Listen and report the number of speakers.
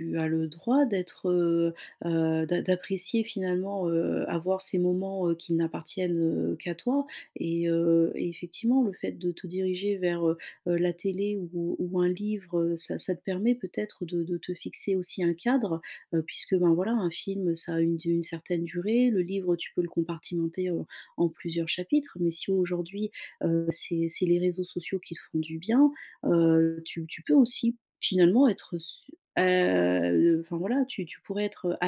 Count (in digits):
1